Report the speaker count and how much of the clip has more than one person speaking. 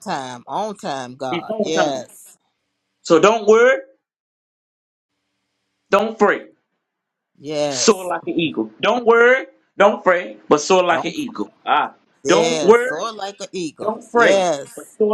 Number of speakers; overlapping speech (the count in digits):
2, about 17%